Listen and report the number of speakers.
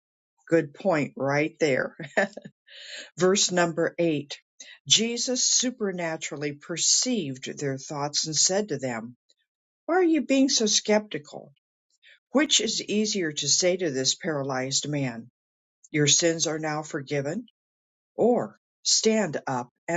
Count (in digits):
1